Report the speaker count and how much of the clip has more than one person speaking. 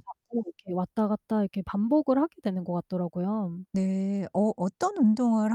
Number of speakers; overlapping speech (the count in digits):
2, under 1%